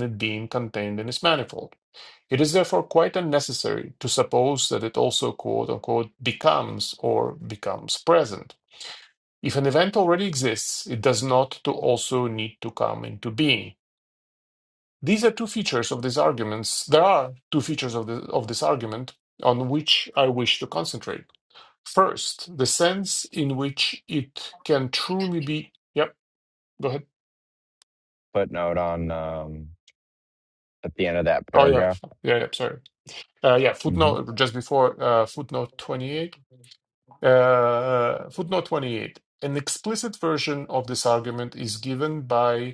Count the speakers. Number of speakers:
2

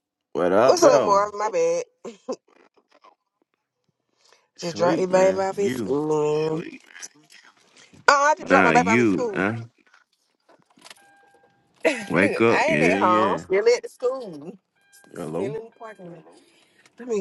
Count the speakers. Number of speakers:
2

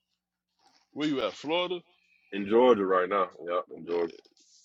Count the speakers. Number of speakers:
2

